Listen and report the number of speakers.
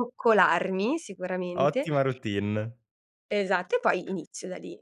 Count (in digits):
2